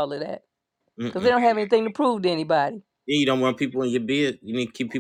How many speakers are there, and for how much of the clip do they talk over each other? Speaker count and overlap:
2, about 4%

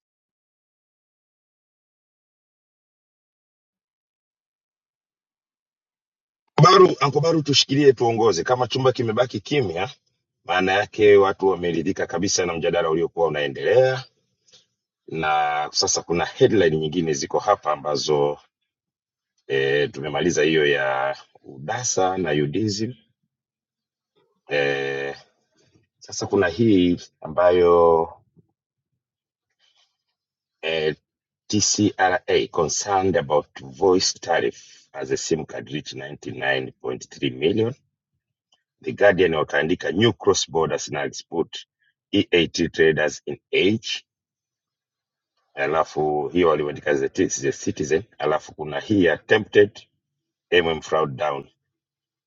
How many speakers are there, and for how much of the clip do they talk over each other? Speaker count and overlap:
1, no overlap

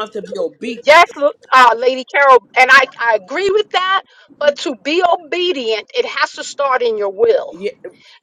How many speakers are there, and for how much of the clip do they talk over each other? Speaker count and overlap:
2, about 2%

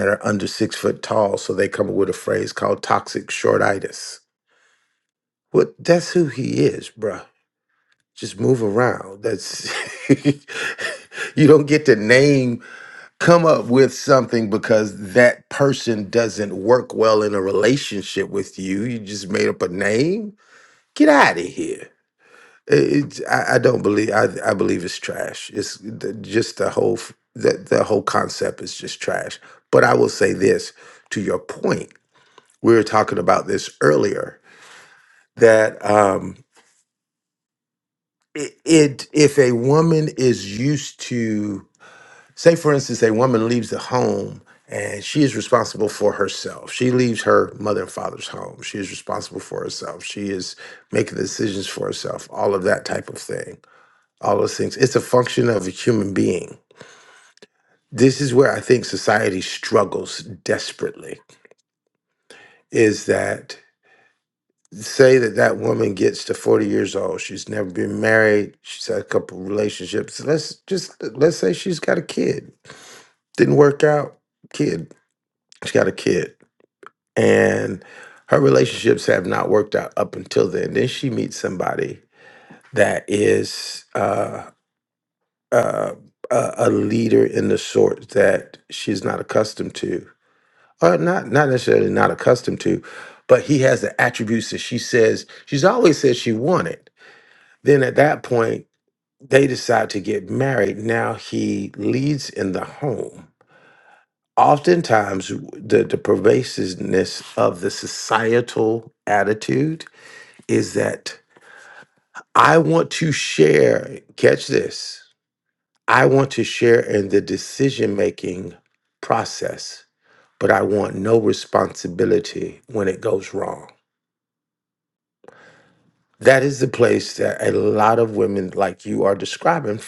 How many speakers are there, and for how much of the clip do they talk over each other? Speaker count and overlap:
1, no overlap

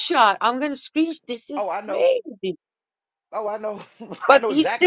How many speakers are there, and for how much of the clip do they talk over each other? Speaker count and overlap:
2, about 23%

